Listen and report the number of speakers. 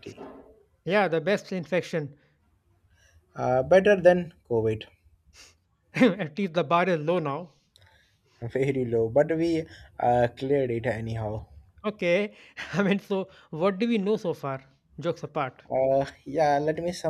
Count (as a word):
two